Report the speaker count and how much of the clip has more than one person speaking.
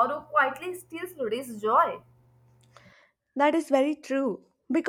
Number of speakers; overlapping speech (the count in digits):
2, no overlap